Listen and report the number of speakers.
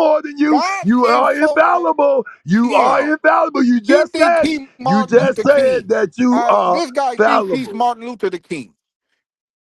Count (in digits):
2